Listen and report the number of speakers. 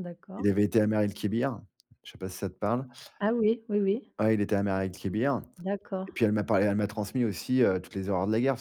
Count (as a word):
two